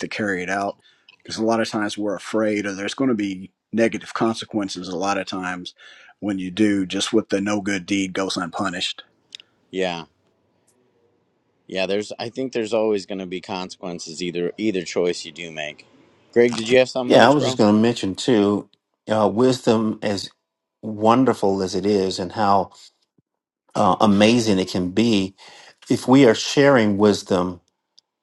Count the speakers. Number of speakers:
3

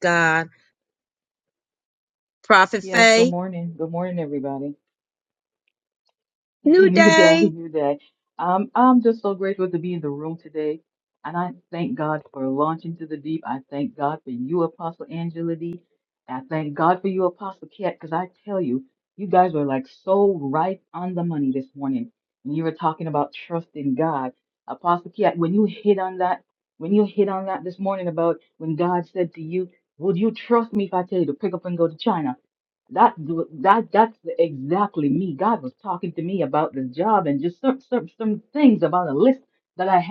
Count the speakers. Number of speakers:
2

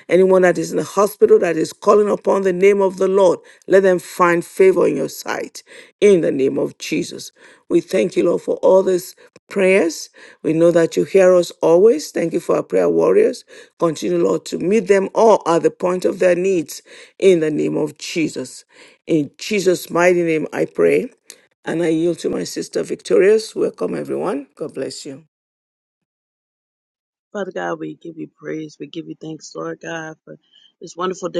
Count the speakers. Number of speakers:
2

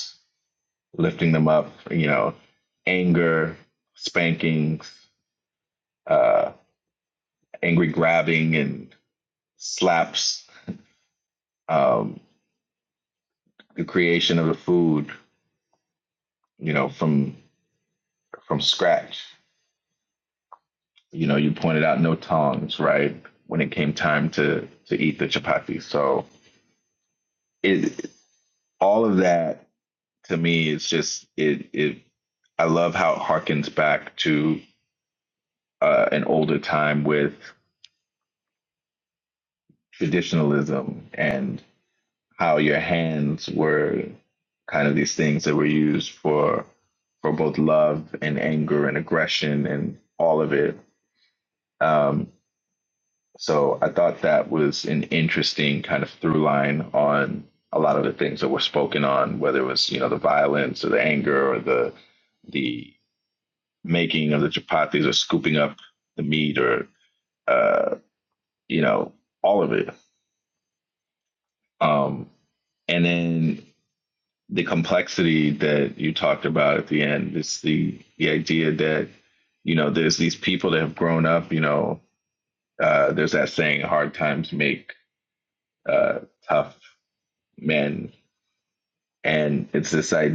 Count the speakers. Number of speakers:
1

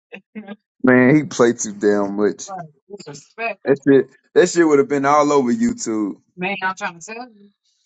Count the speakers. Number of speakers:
2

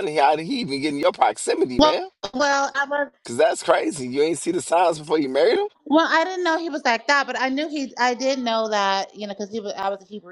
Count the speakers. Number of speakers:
2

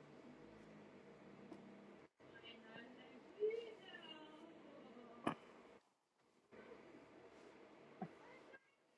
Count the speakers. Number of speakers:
0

